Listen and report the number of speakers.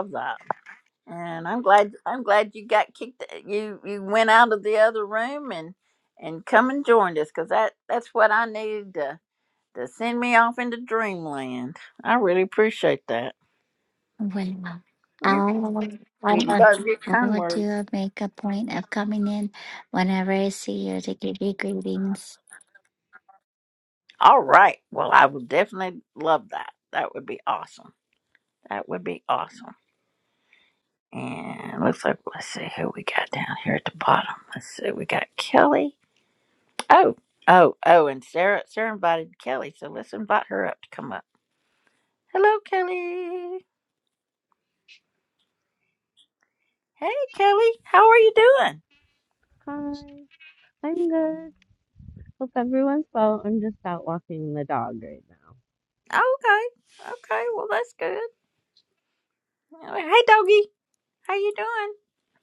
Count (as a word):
three